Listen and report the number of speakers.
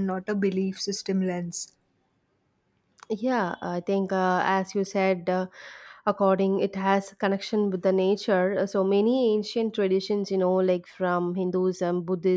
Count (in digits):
2